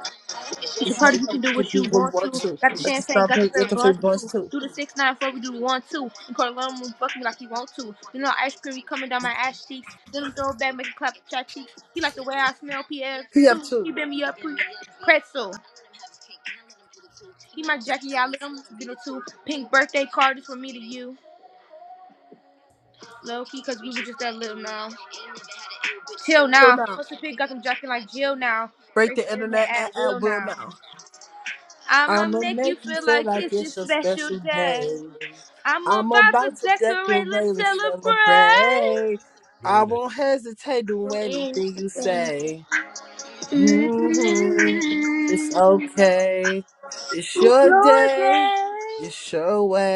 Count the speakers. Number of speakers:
two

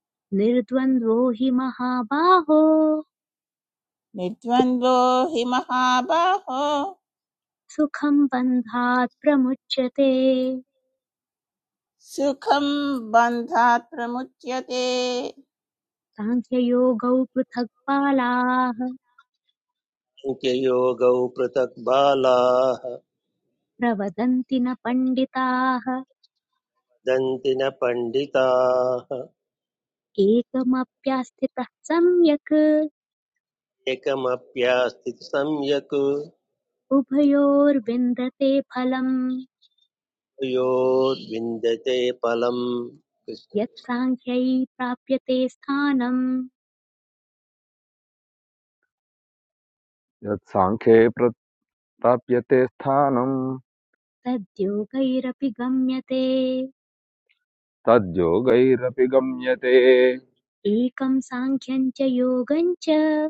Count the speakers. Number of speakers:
four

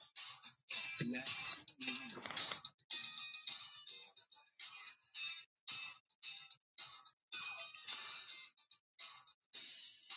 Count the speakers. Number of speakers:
zero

